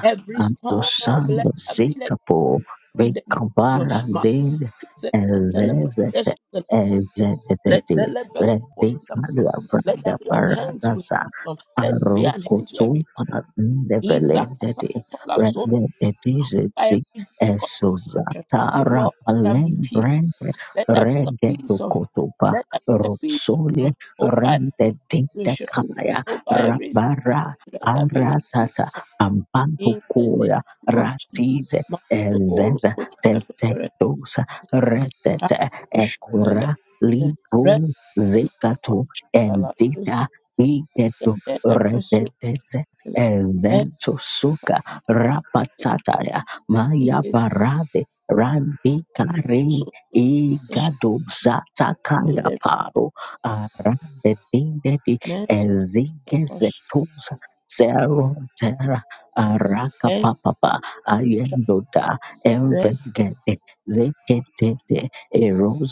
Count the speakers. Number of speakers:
2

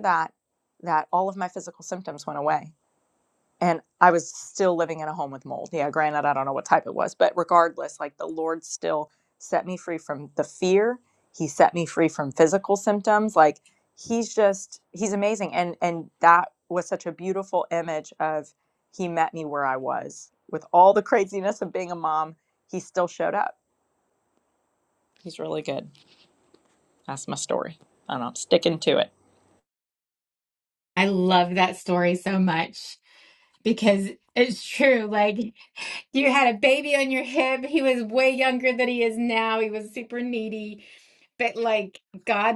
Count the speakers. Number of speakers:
2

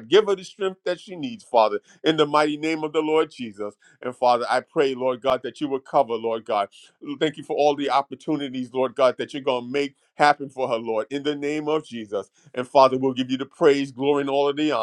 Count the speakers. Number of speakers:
1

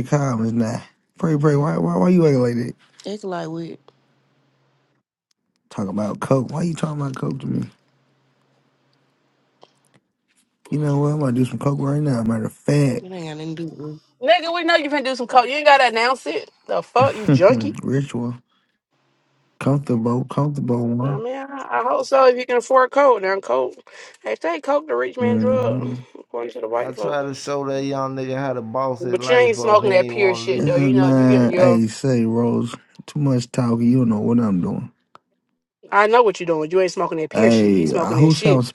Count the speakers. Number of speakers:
4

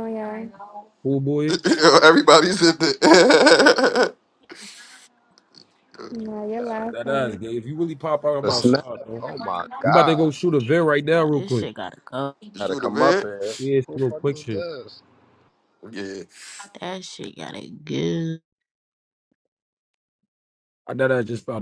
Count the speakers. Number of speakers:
5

